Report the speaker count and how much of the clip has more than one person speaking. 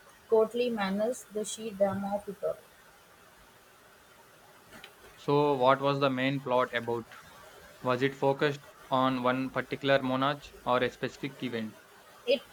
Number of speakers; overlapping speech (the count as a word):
two, no overlap